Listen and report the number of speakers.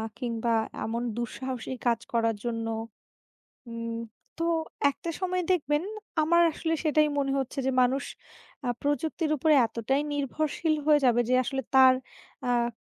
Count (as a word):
one